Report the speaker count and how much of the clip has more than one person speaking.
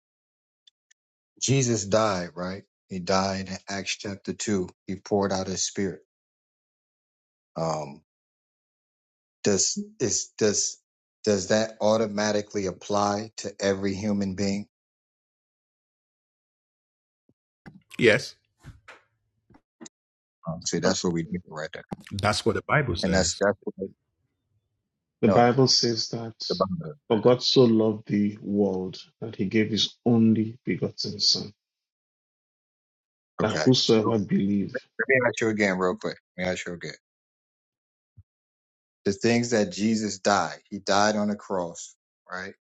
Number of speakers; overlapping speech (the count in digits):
3, about 4%